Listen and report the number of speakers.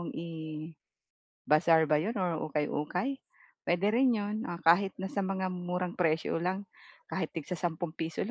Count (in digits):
1